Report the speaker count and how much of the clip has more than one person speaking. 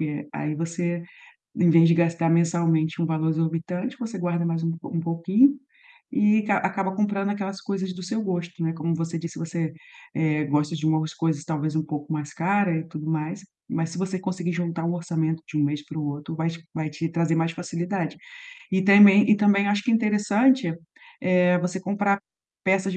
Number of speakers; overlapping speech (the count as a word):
one, no overlap